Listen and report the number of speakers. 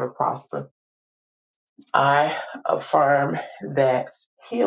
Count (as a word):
one